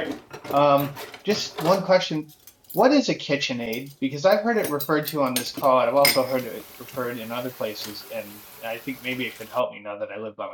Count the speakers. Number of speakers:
one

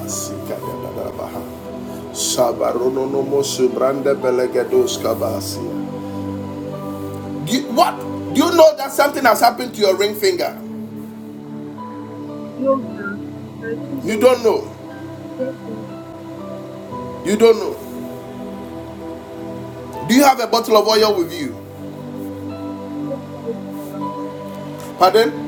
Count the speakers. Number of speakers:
two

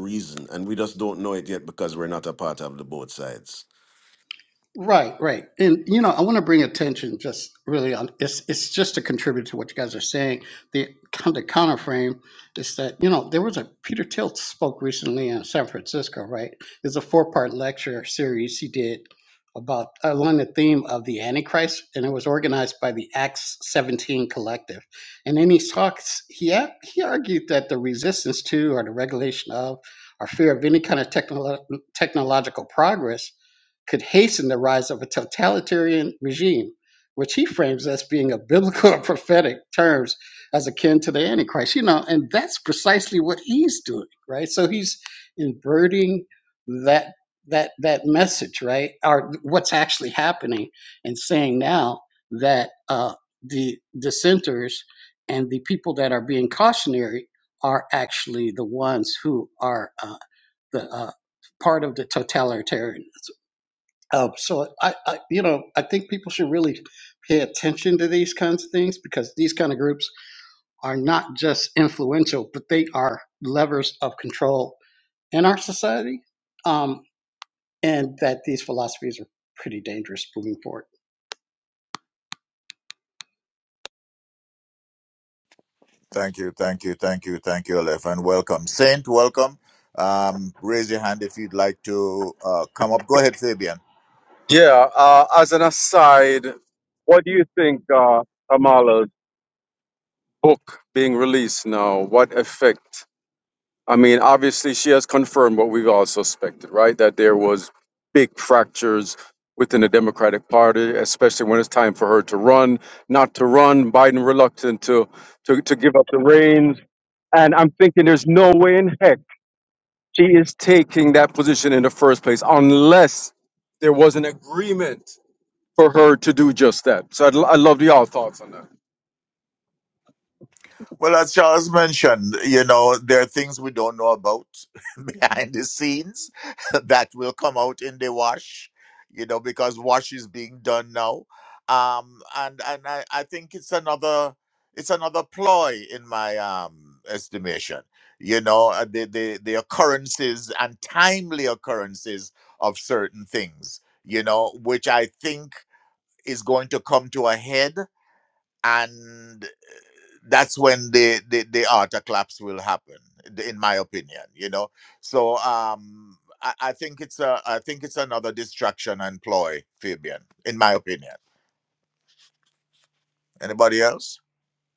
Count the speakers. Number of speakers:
four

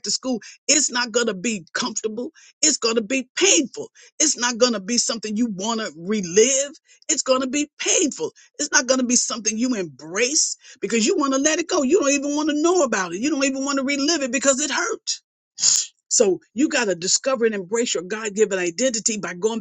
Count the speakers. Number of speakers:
one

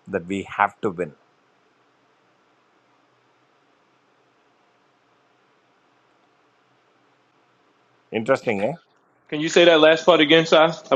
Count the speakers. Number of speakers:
two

